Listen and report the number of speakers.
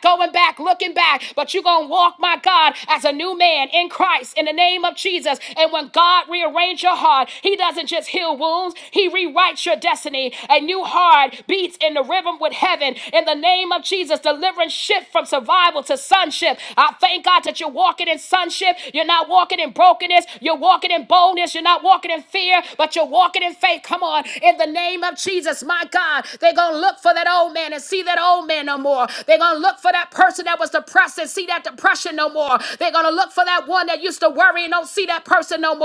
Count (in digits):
1